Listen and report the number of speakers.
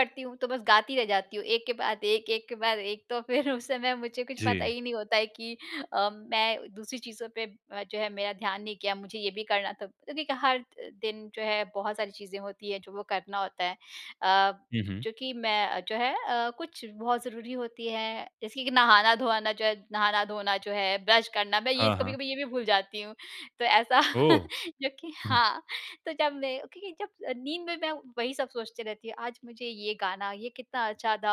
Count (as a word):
two